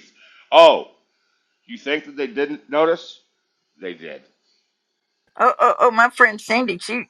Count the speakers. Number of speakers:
2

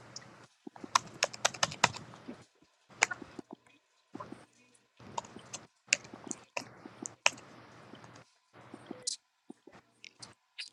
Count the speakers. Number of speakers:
0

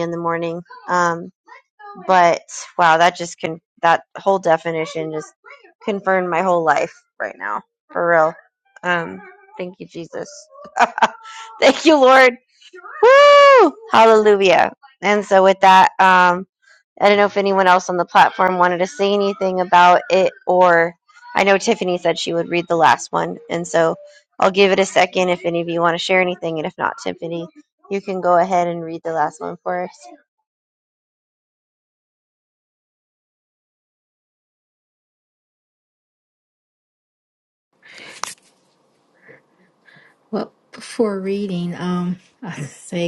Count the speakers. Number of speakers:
2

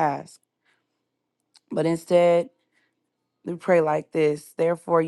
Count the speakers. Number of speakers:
1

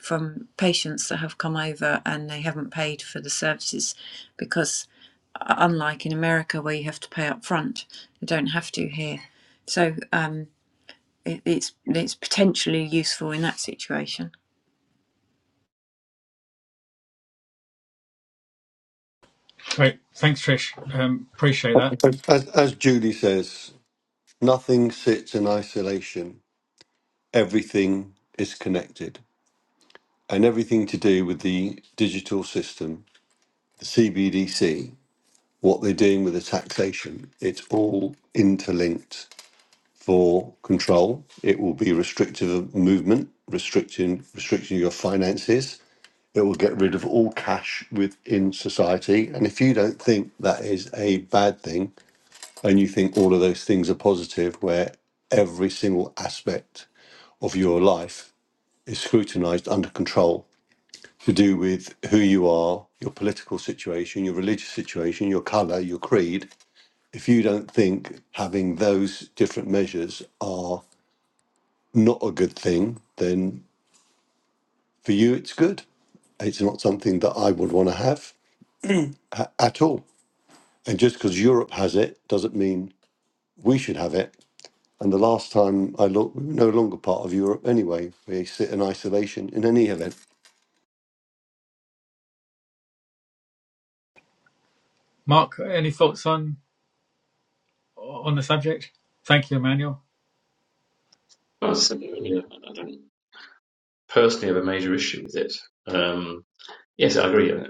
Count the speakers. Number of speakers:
4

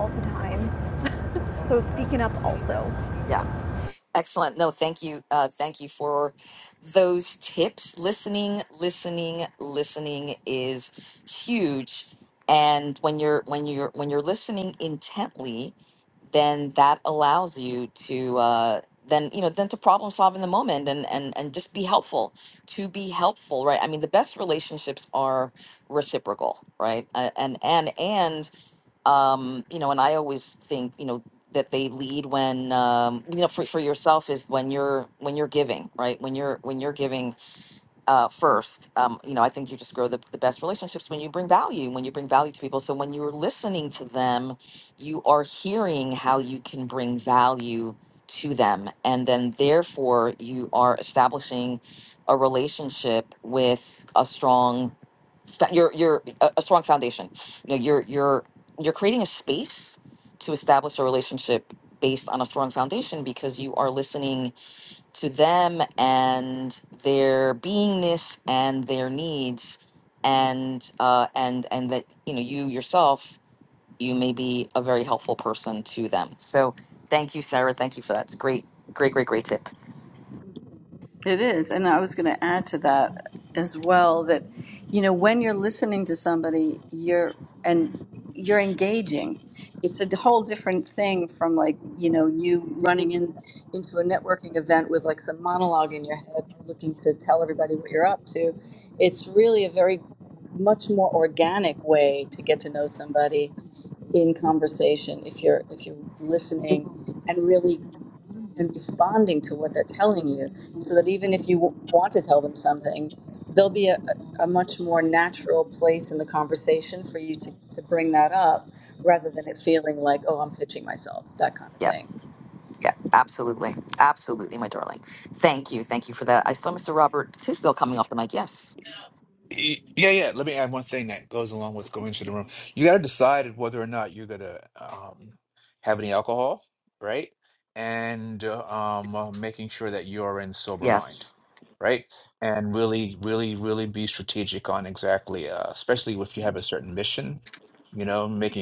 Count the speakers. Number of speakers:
4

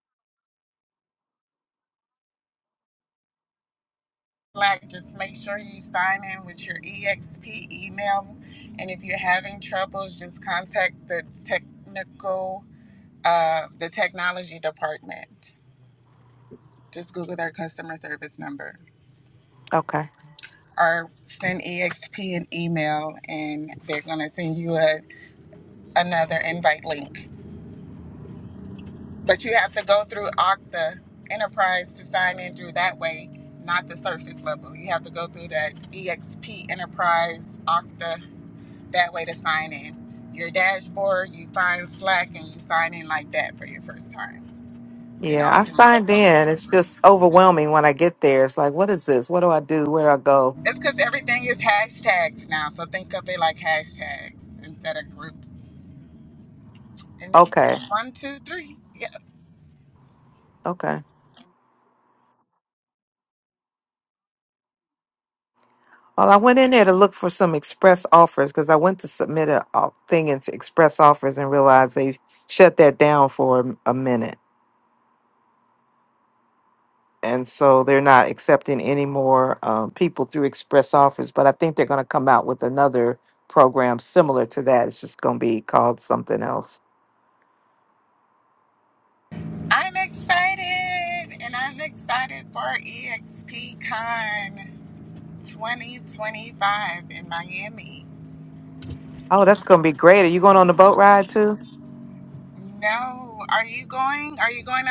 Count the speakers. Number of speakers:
2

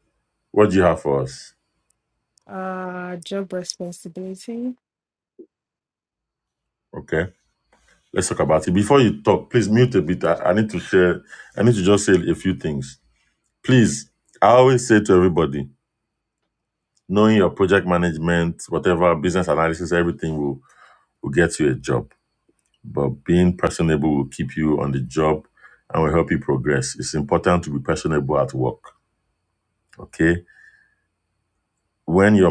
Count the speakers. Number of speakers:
2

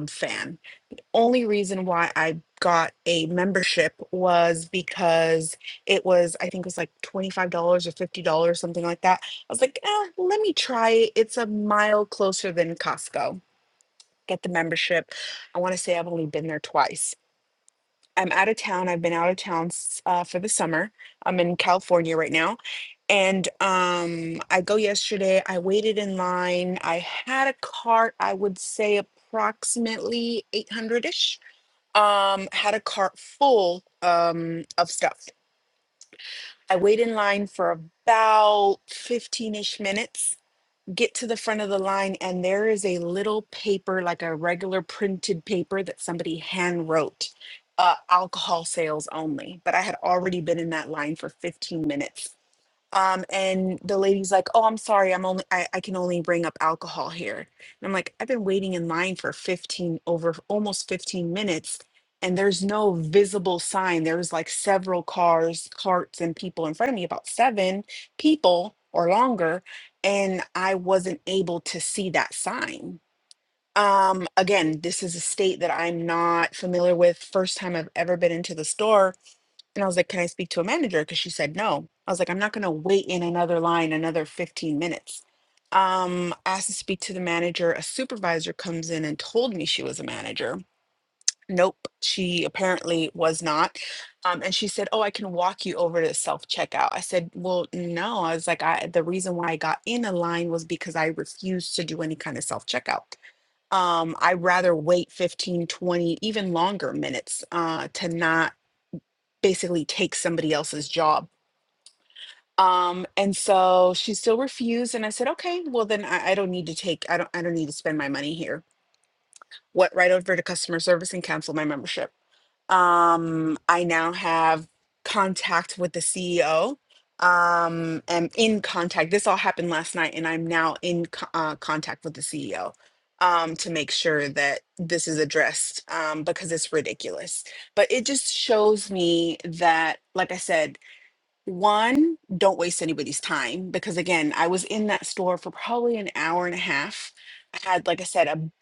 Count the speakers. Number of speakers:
1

